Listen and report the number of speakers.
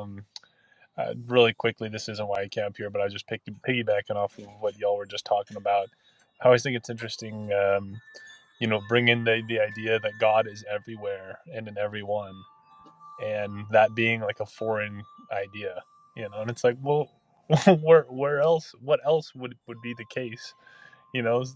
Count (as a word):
one